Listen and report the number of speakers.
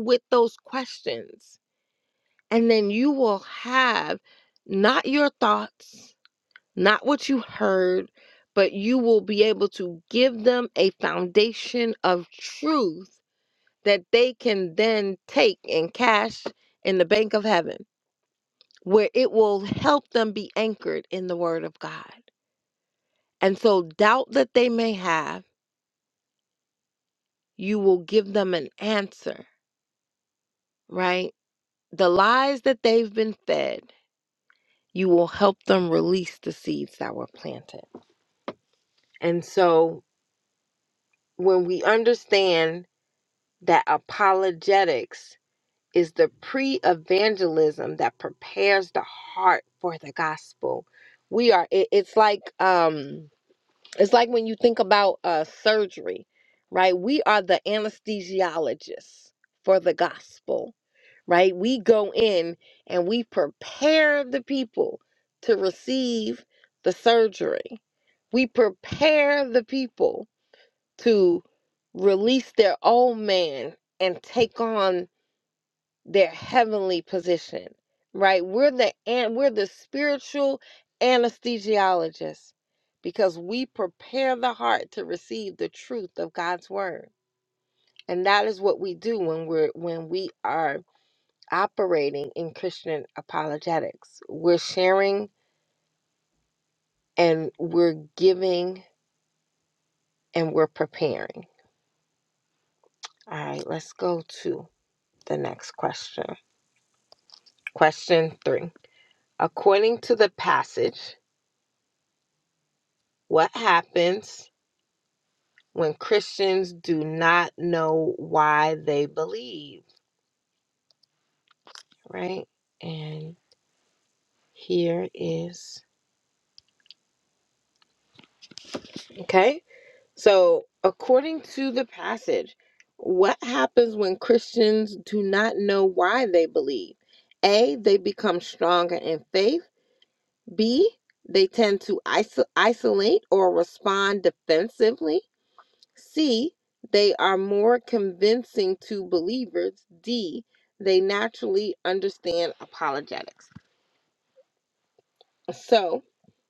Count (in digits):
1